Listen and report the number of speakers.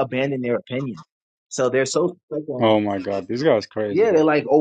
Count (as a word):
two